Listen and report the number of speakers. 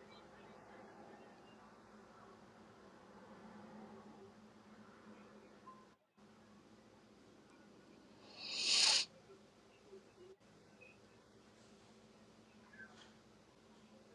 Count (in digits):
0